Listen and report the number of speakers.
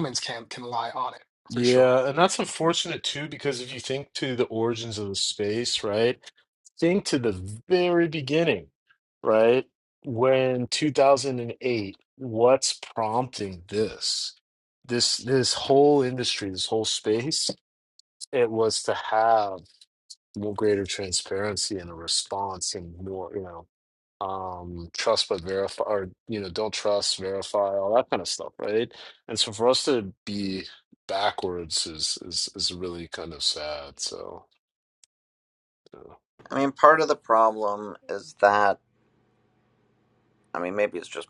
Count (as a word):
three